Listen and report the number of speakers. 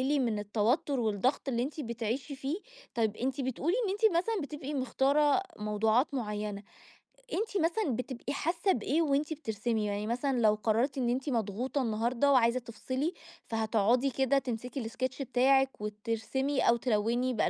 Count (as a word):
one